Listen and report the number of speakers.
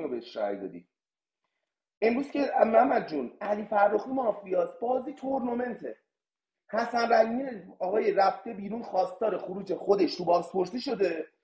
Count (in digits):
1